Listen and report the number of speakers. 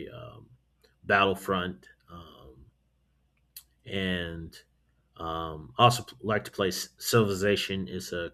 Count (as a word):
one